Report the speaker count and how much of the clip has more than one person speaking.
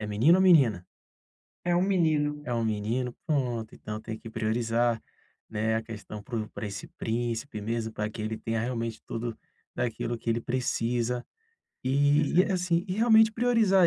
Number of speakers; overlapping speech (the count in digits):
2, about 2%